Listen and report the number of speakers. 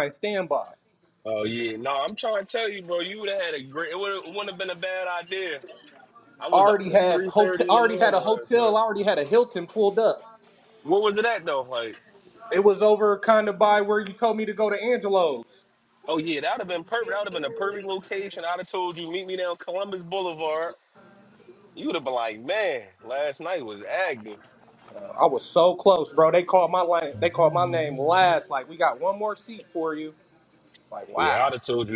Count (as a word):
two